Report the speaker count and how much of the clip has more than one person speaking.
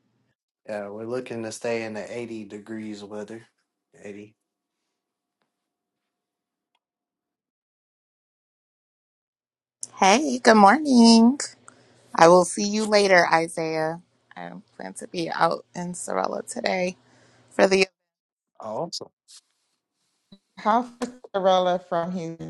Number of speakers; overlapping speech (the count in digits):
3, no overlap